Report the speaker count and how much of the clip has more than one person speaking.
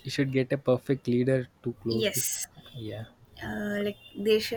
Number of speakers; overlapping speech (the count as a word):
two, about 8%